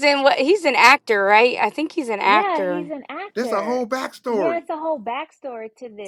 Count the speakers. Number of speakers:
3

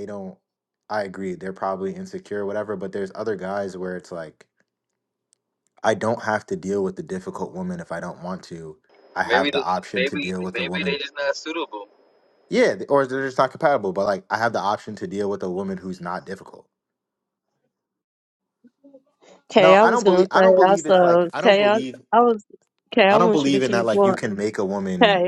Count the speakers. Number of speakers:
3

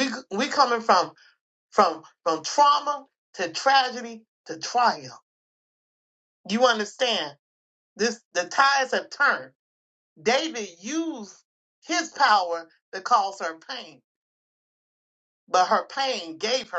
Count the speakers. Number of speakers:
1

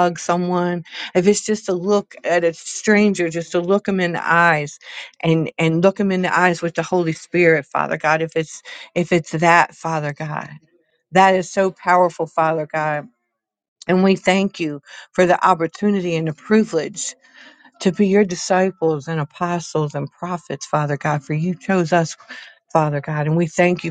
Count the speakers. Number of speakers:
1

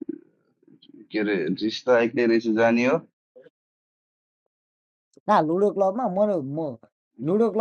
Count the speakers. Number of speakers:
2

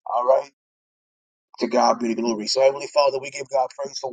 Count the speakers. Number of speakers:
1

